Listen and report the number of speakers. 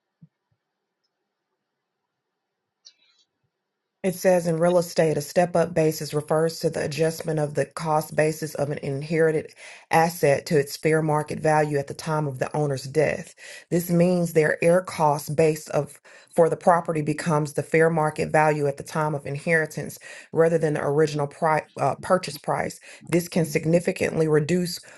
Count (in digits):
1